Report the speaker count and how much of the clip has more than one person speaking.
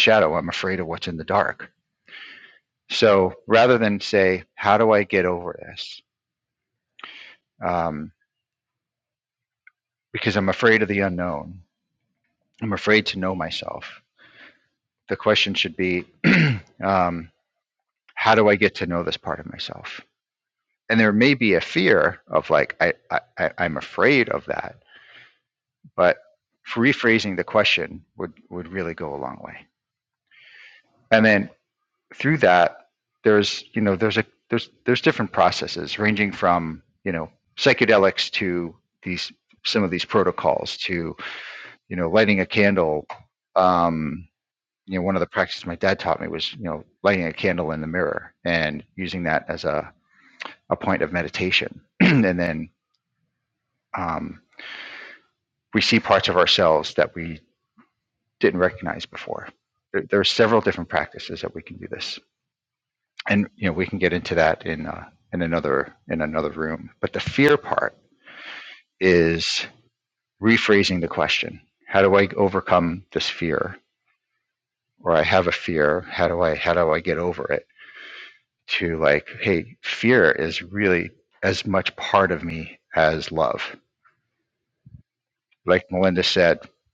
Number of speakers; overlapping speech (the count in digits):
1, no overlap